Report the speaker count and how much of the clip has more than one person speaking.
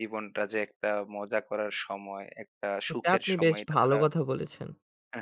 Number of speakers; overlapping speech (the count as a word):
two, about 22%